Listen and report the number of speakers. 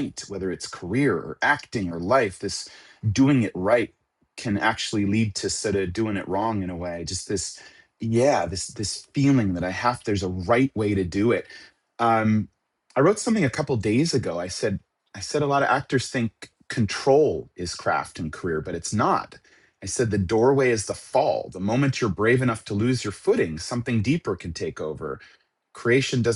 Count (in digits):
1